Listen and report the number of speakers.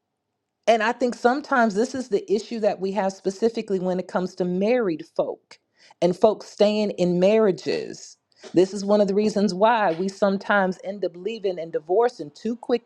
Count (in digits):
1